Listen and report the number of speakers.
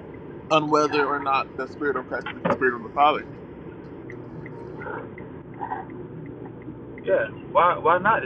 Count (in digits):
2